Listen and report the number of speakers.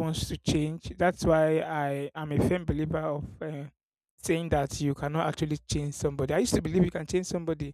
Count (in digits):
1